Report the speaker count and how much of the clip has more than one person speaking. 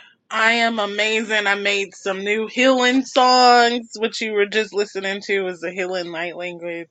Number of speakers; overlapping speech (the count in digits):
1, no overlap